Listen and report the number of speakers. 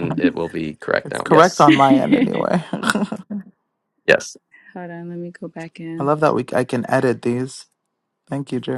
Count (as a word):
three